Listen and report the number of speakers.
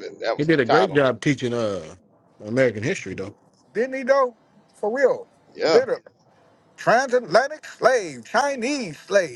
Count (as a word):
three